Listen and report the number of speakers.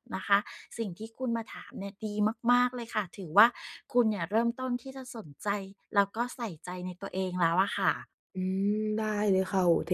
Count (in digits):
2